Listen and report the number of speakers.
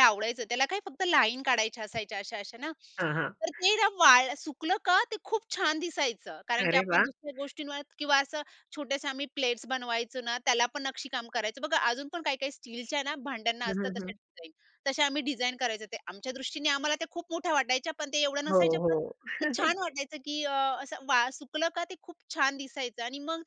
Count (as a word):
two